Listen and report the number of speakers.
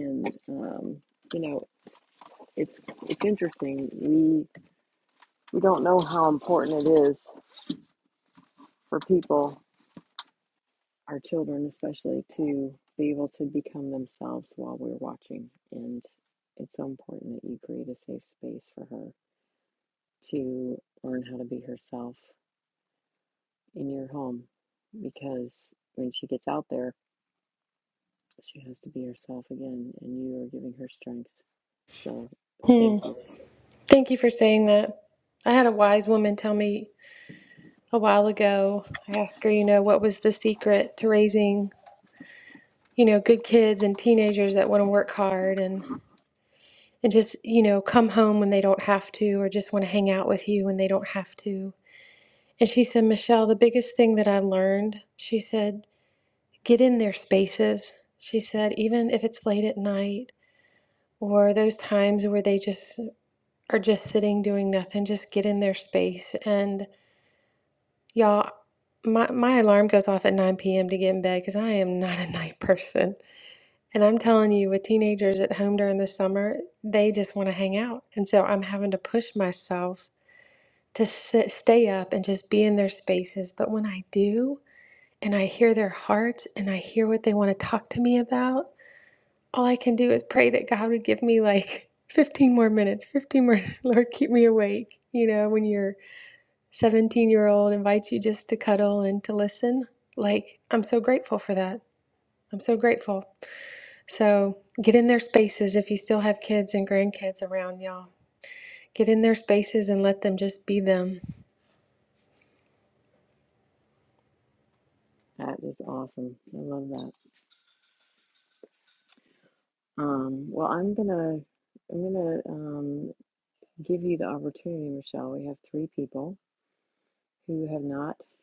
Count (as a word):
two